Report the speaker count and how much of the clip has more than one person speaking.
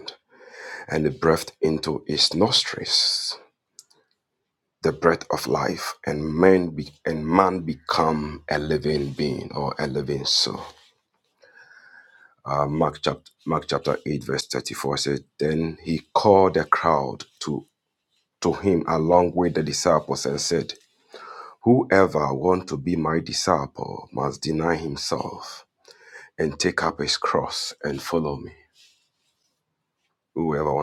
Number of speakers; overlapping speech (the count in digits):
1, no overlap